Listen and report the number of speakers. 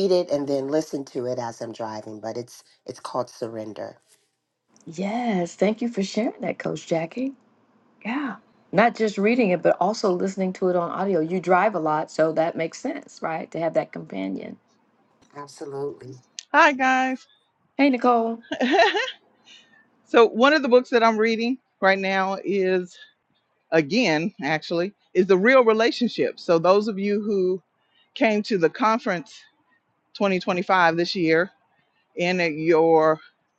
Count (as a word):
three